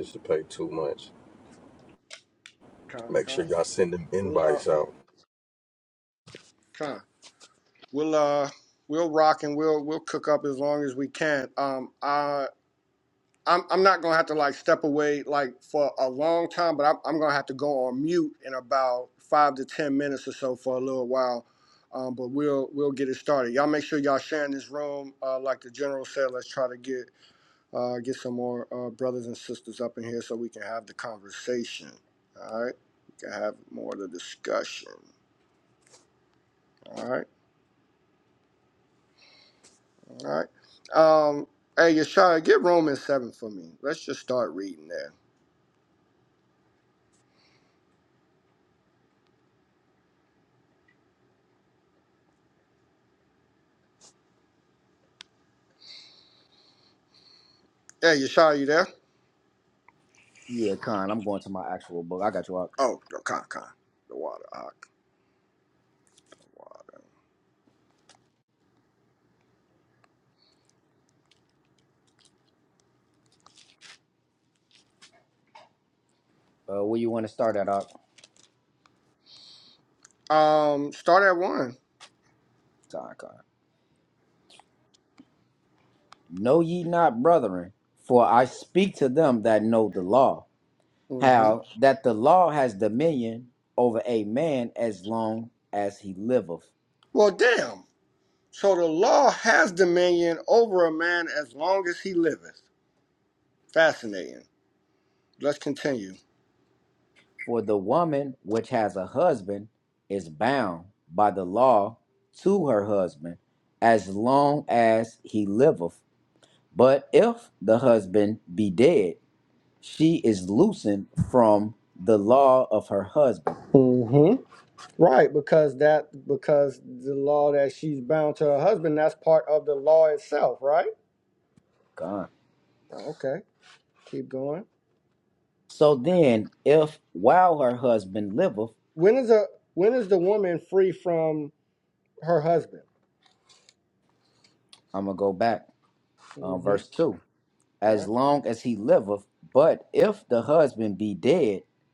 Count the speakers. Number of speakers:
3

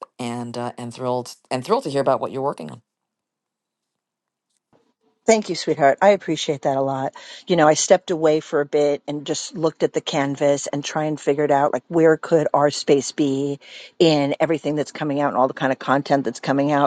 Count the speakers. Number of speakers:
2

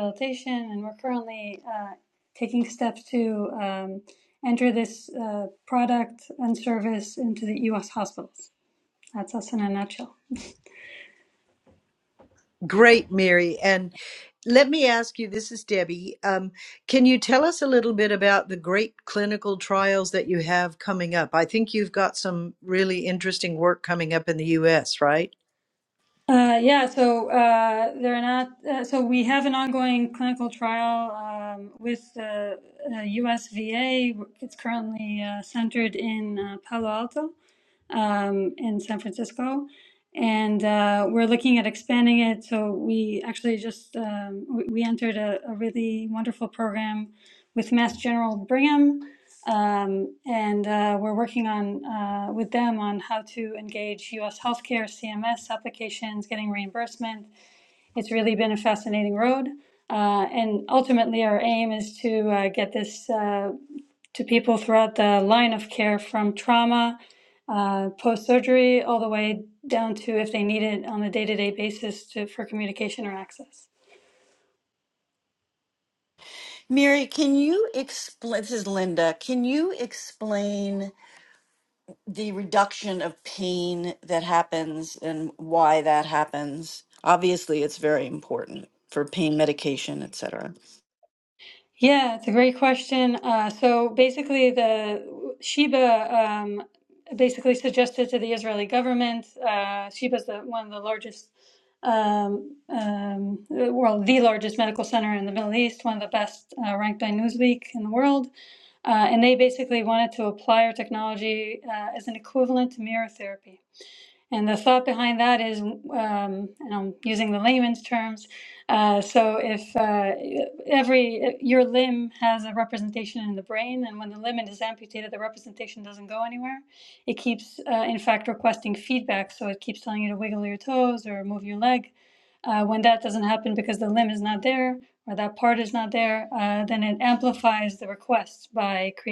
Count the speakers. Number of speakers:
3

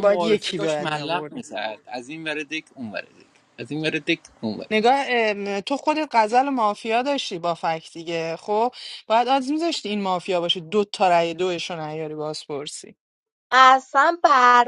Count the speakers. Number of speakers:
3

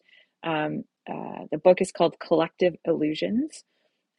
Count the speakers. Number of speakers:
1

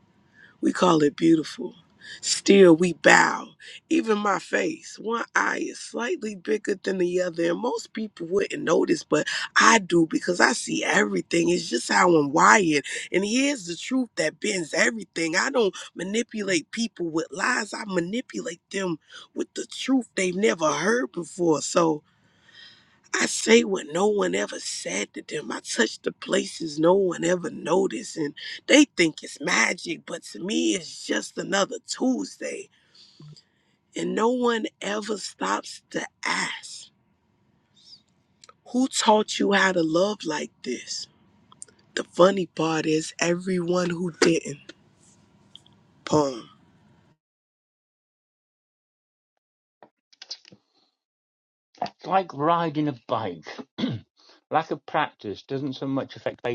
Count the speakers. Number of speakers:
2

